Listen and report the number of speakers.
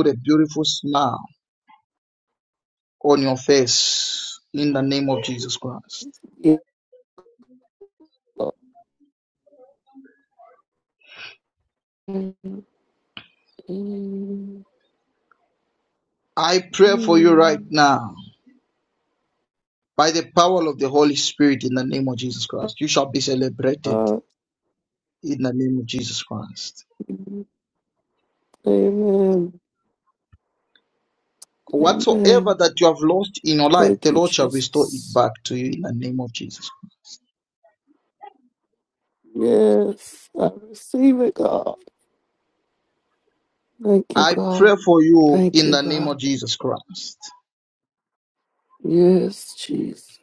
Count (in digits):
2